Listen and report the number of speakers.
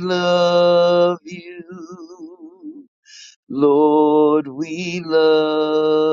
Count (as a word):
one